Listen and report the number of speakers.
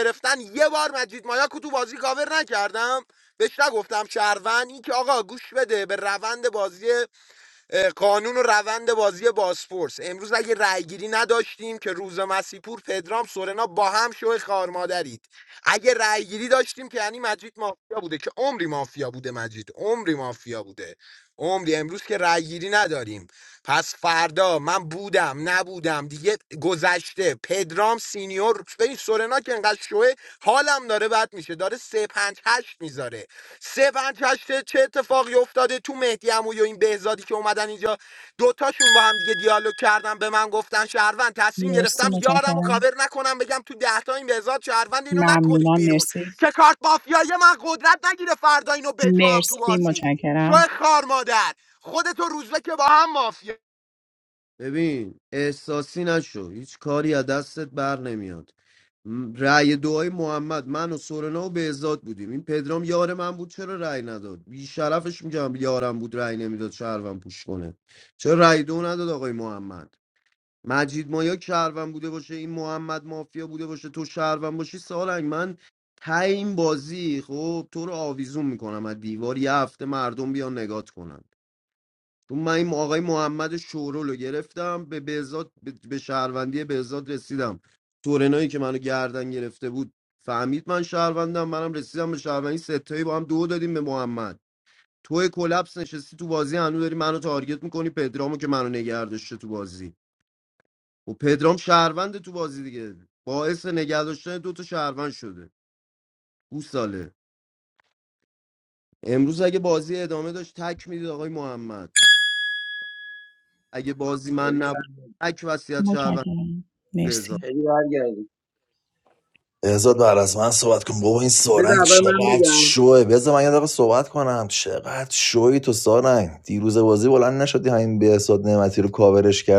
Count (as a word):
five